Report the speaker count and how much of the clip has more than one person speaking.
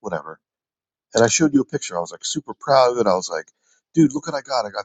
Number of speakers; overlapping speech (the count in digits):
1, no overlap